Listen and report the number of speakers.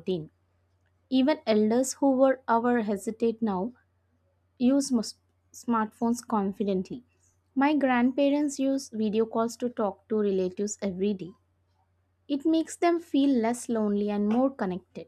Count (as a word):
one